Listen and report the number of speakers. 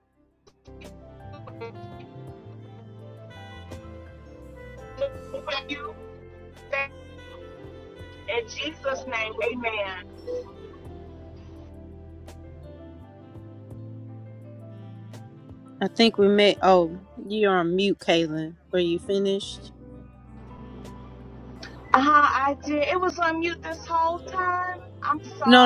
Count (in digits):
2